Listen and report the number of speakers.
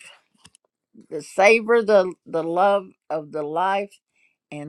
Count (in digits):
1